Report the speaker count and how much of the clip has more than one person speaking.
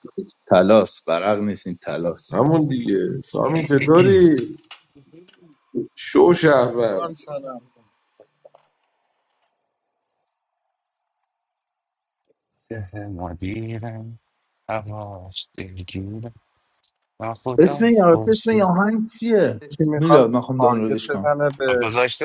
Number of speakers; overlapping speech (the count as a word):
four, about 10%